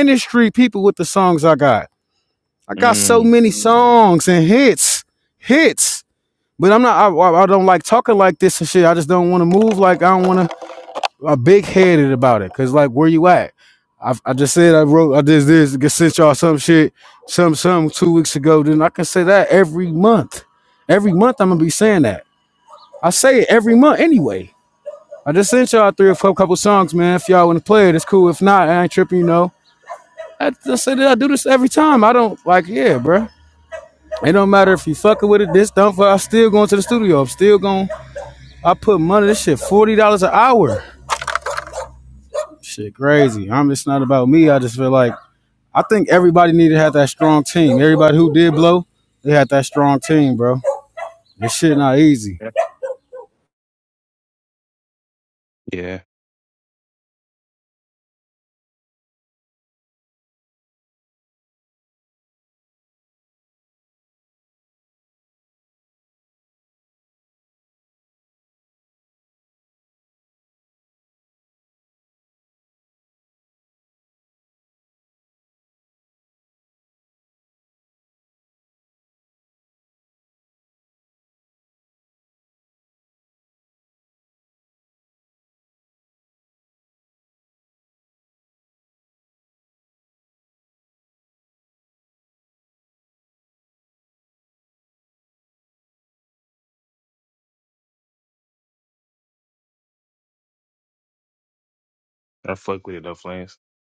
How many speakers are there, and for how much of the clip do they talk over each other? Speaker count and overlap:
2, about 1%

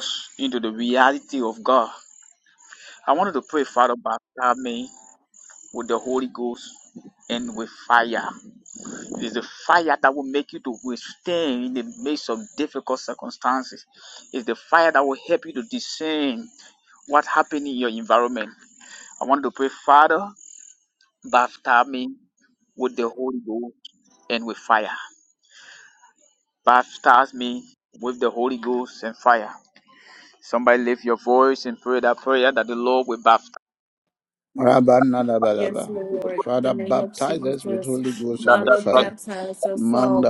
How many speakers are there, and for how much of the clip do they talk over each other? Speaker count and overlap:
3, about 7%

